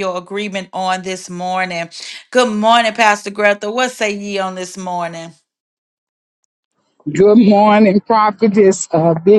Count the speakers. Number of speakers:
2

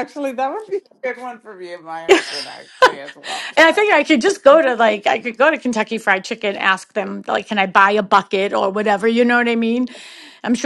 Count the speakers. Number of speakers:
2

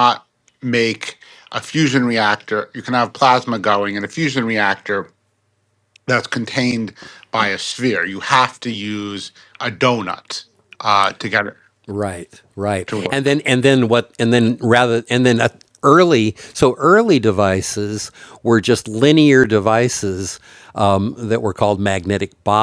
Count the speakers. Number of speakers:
2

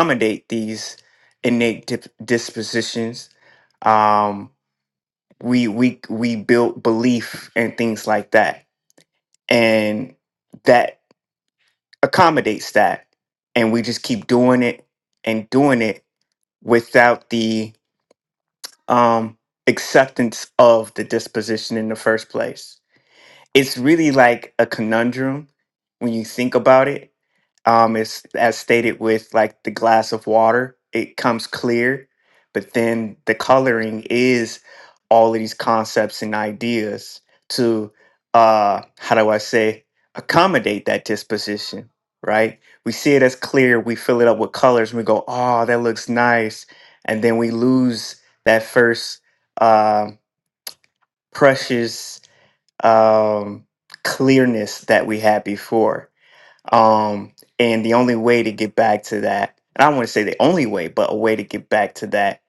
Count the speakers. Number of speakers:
1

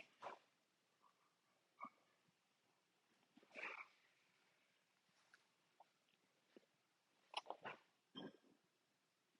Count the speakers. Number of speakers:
0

